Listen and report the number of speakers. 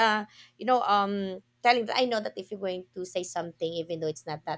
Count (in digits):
1